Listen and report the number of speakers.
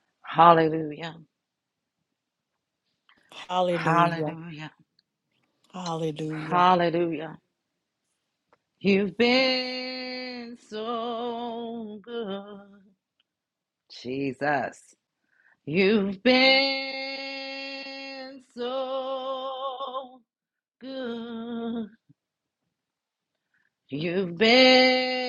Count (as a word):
two